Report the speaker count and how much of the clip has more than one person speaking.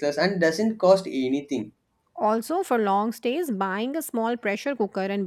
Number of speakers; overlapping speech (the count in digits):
2, no overlap